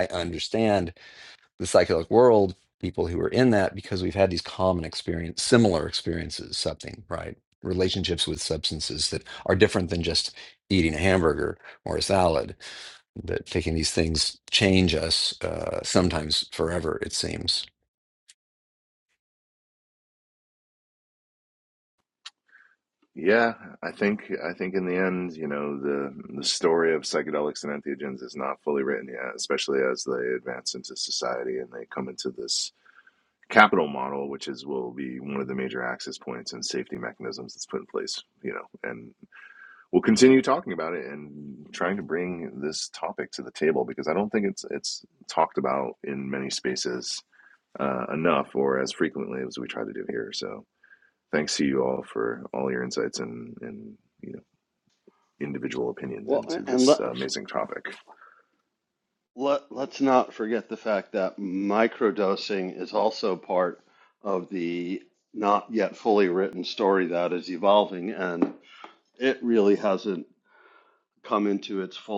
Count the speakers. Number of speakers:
three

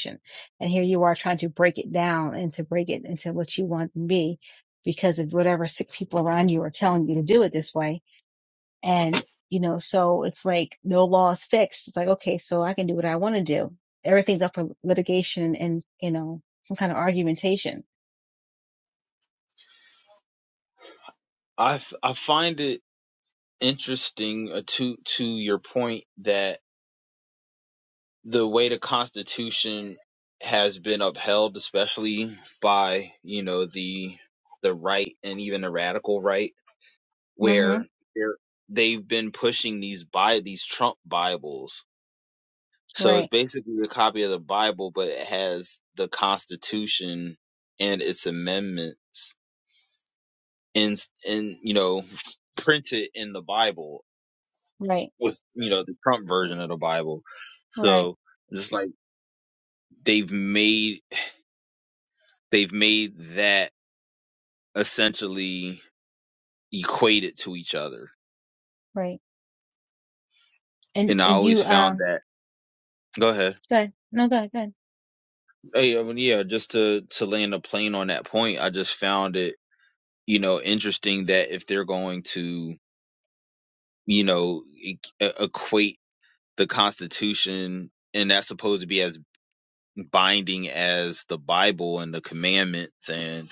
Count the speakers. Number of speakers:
two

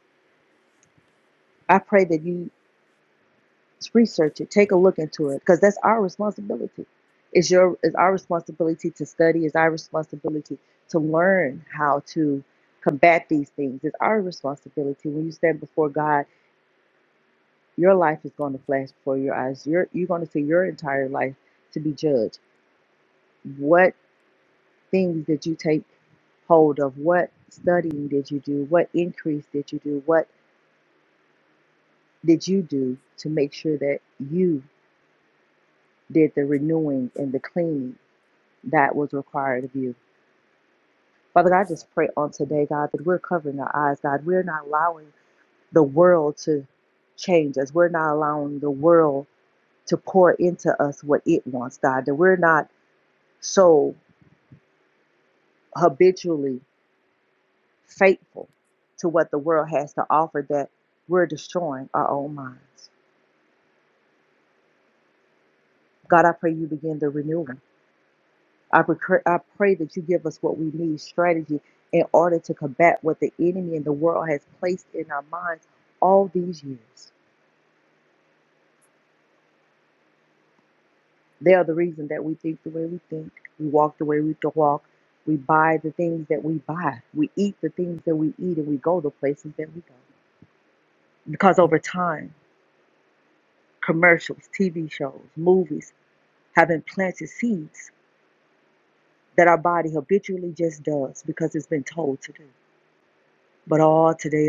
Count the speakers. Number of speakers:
one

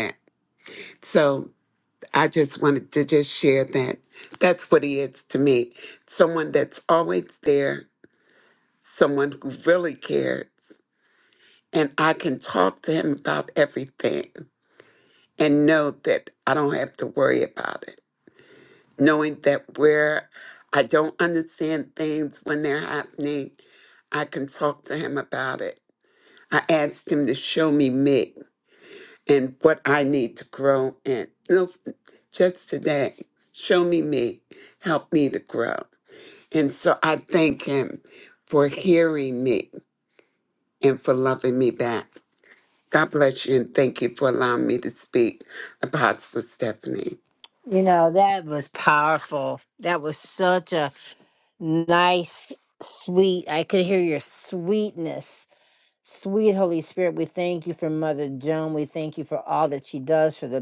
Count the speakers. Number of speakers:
two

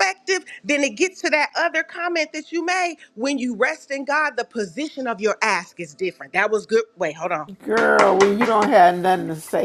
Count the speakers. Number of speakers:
two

